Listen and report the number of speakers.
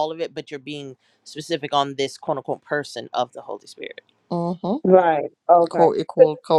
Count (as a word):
three